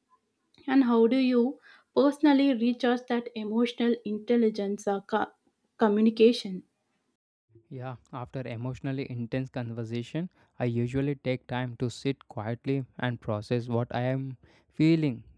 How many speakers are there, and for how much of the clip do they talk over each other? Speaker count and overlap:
two, no overlap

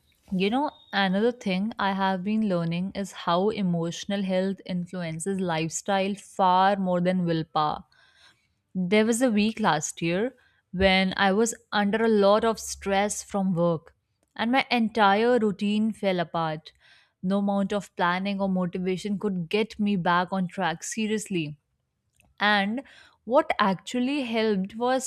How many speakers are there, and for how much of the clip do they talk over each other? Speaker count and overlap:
one, no overlap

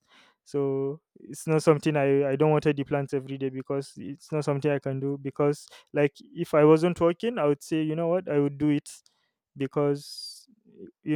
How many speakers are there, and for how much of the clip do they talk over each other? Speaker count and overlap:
one, no overlap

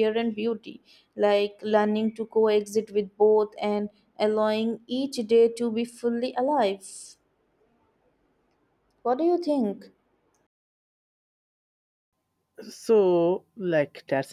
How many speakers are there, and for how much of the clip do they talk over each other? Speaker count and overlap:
two, no overlap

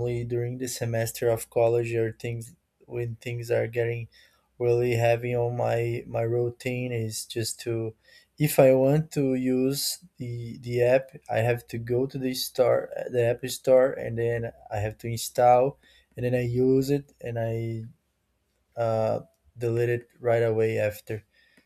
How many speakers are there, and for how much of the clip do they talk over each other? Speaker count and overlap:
one, no overlap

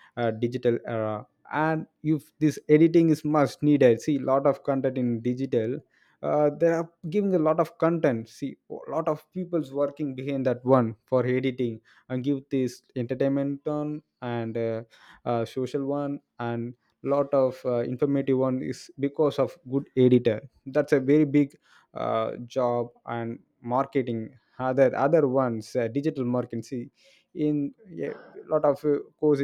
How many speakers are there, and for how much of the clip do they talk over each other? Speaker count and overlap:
one, no overlap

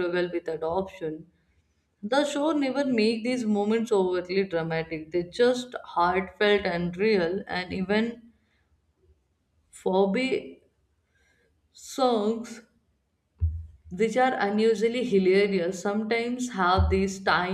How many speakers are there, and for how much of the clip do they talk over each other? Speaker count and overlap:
one, no overlap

